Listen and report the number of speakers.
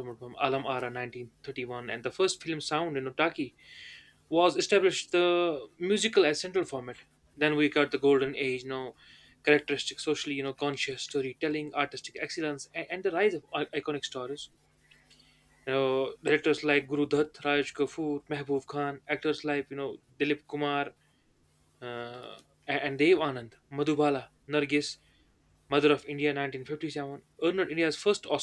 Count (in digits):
1